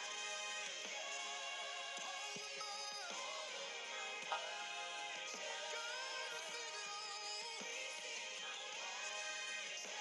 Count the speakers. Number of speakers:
0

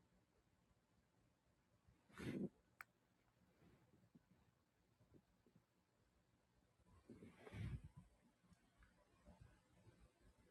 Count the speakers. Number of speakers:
0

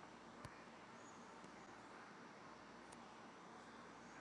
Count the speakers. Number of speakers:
0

